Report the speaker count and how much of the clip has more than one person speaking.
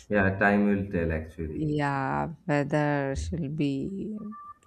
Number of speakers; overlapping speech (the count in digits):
2, about 2%